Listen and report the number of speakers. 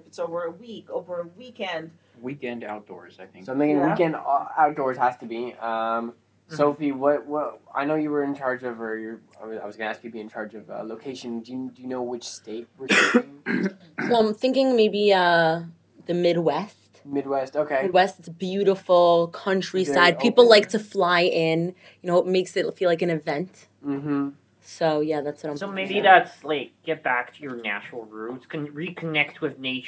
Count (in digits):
5